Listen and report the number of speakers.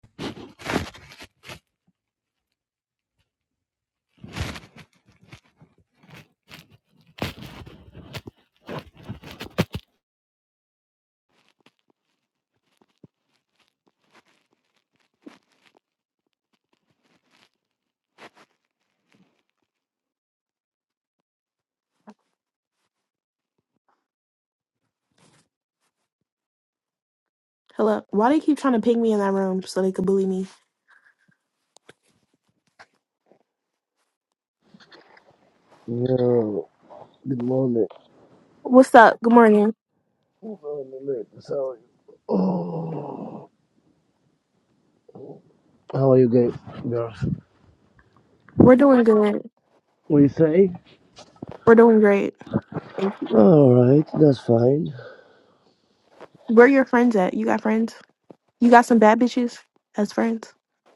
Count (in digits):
2